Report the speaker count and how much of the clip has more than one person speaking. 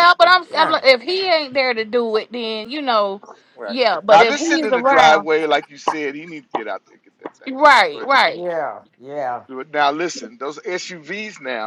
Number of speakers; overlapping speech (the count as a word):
three, about 20%